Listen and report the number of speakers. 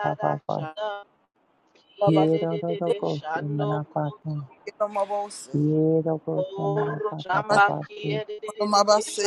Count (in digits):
3